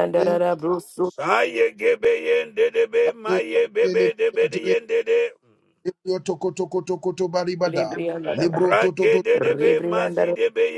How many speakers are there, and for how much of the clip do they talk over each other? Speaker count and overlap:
3, about 21%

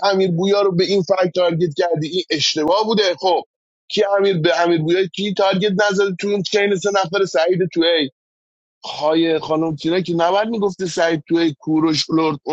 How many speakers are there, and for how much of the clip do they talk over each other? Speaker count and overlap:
1, no overlap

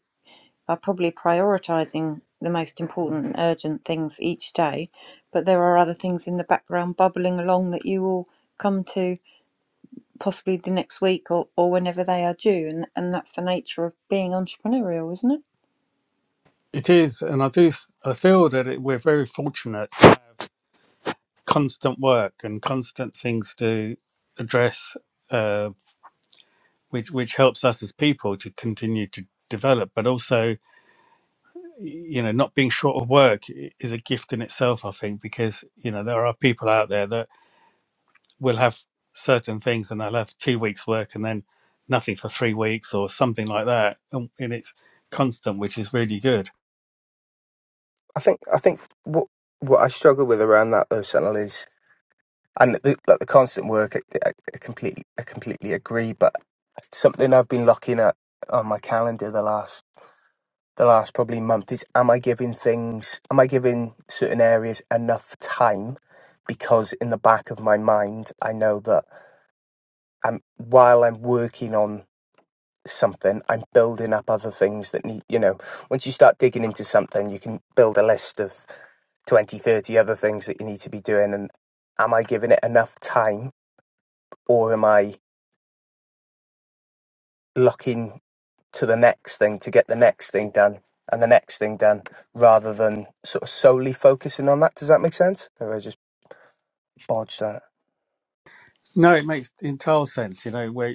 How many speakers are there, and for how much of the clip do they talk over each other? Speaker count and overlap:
3, no overlap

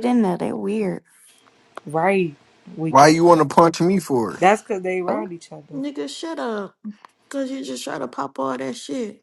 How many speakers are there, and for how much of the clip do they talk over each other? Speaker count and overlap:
4, about 5%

